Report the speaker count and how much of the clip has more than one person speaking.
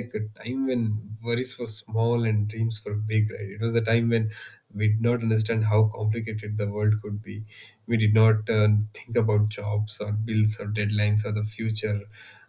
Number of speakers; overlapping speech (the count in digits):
1, no overlap